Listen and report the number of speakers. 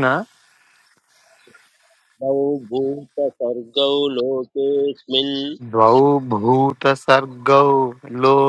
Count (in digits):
2